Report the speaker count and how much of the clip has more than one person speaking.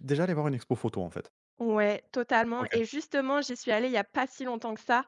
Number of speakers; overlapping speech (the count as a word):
two, about 4%